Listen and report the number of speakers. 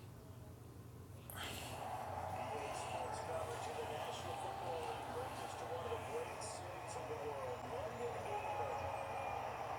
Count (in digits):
0